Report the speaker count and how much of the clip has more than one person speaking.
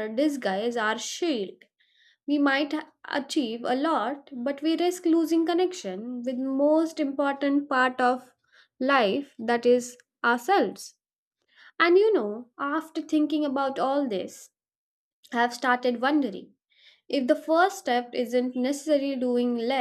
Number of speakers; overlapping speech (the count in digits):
1, no overlap